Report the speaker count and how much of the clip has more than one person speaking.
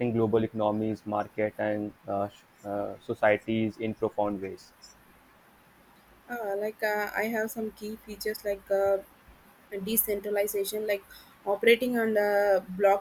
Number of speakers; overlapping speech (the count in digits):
2, no overlap